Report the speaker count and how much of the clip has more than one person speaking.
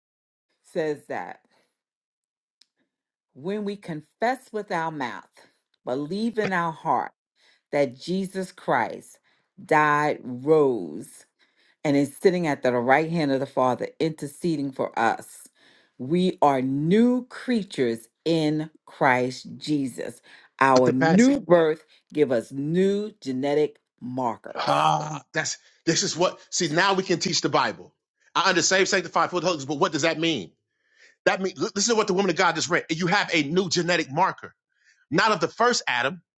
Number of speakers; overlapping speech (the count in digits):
2, about 2%